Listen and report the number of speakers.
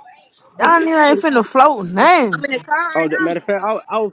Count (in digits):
3